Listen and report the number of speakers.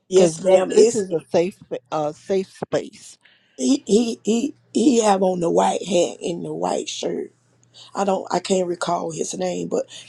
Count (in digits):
2